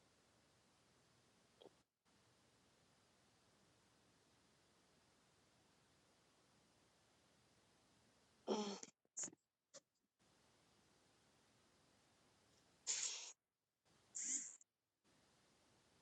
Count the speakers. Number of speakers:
zero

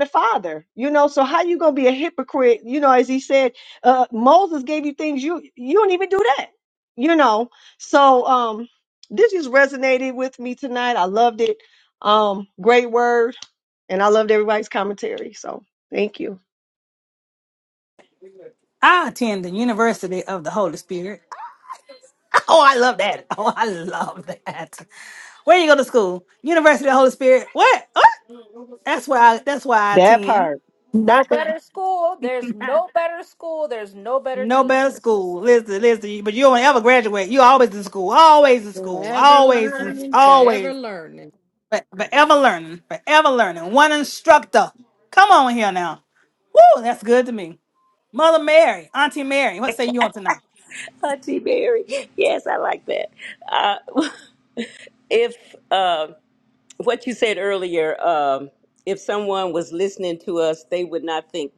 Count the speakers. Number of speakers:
four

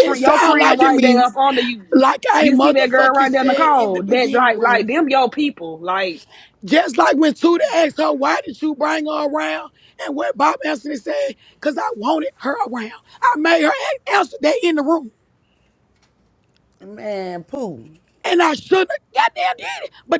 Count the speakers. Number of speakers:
three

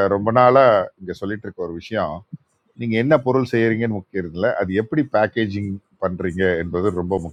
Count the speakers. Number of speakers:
one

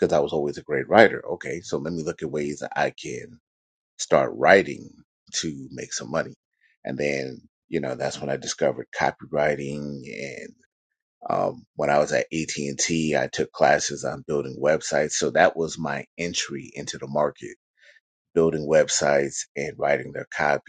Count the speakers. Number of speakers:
one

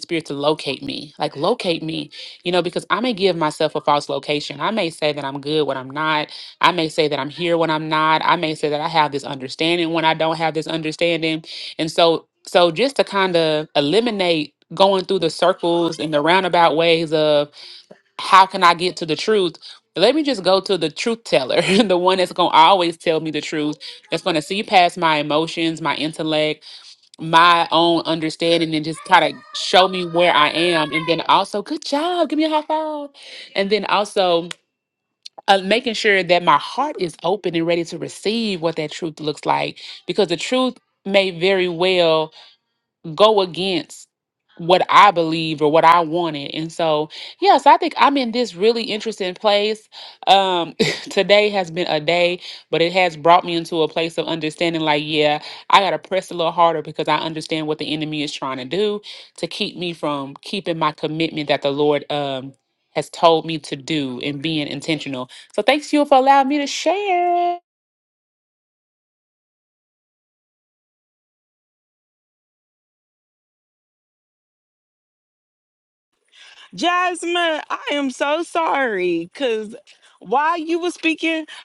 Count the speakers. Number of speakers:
two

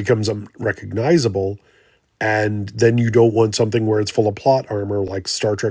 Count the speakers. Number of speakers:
one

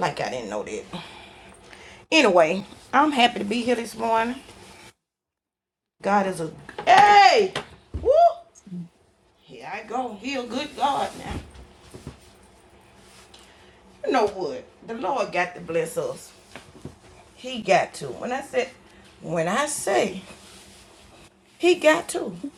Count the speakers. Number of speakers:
one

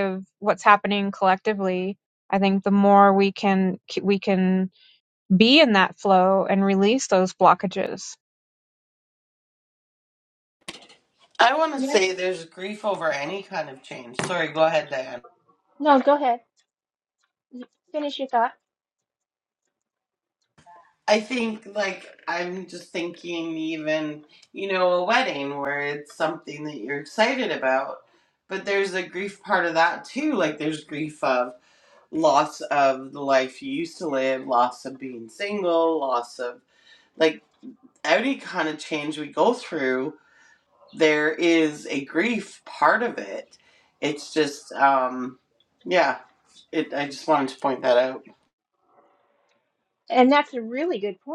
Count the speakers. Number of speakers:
three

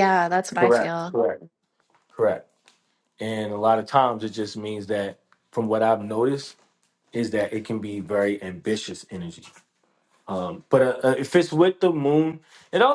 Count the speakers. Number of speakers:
two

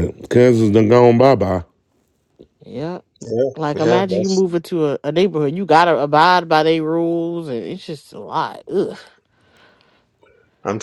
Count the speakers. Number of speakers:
three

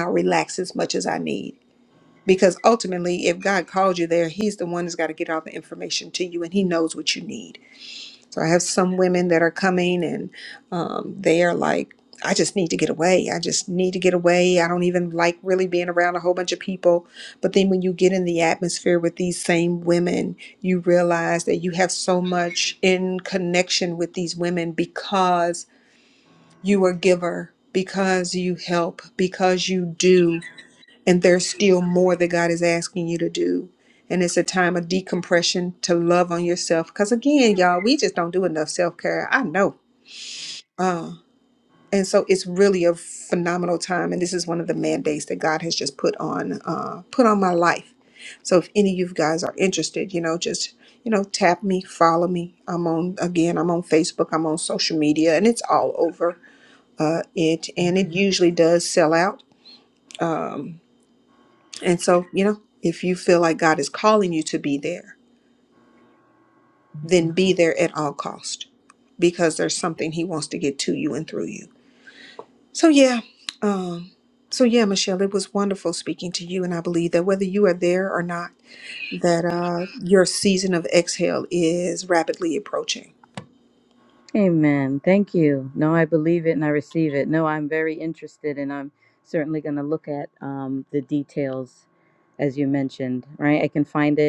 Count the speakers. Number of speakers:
two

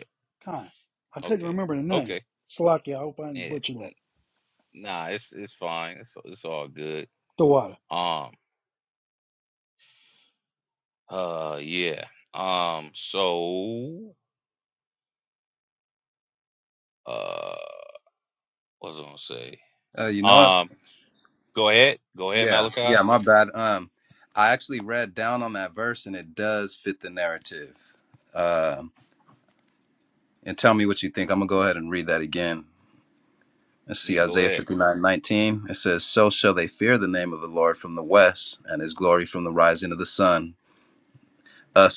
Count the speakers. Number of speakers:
three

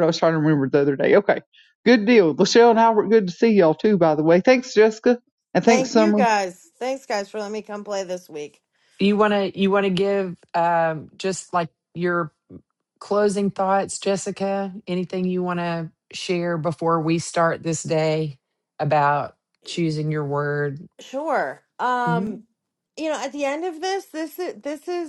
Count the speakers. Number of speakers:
three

